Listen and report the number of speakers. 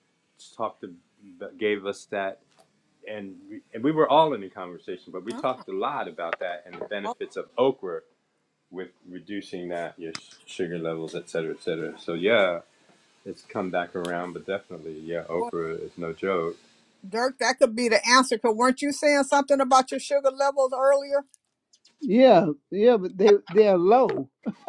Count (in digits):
3